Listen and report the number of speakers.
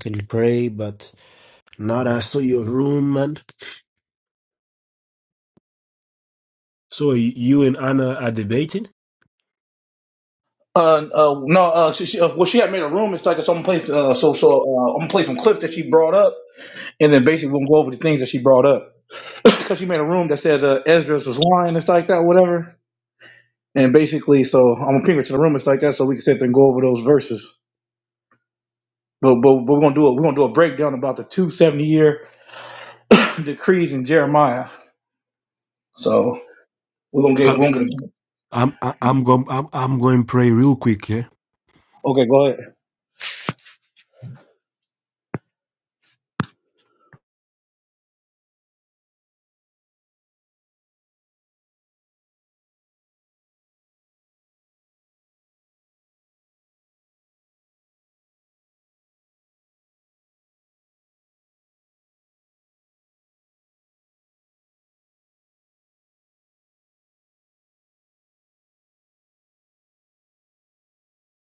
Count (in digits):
2